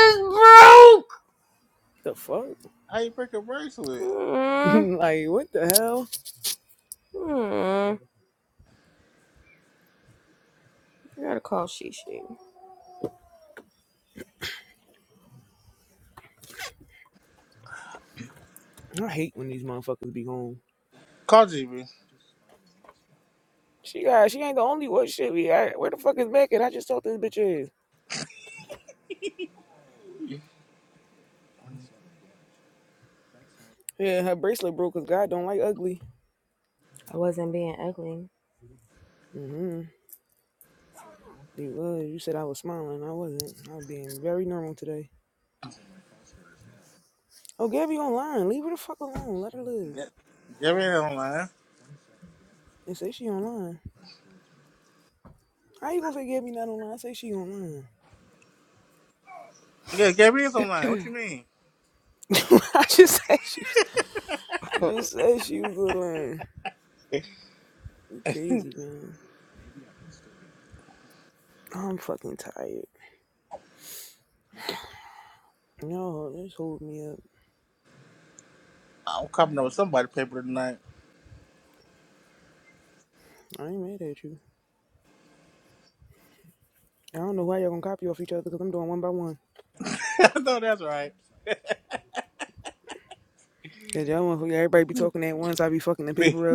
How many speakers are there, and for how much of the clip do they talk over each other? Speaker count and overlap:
3, about 1%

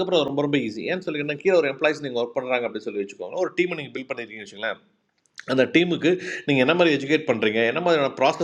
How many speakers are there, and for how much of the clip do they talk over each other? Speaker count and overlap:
1, no overlap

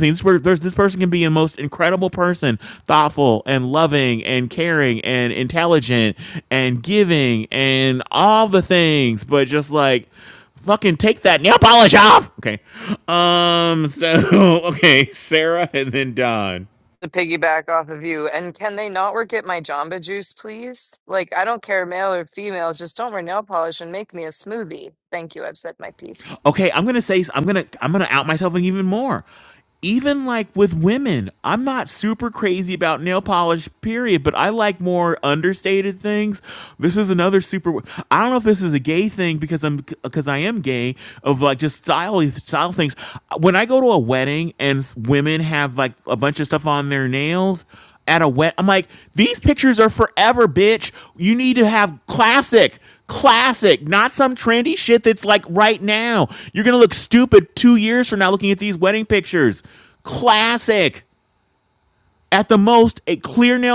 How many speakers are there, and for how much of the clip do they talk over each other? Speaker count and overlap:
2, no overlap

